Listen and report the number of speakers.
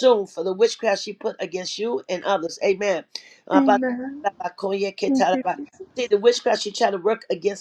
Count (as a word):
two